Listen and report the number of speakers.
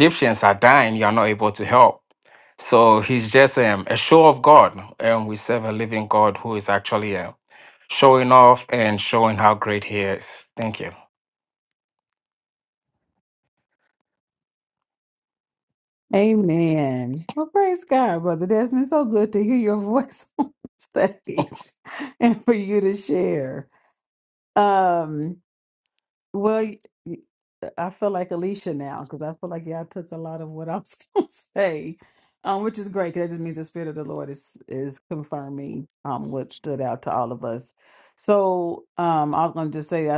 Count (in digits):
2